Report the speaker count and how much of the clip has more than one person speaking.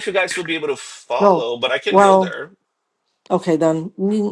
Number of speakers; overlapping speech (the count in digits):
2, about 14%